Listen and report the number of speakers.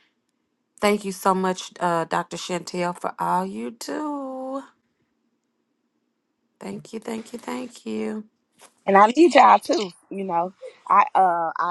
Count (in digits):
2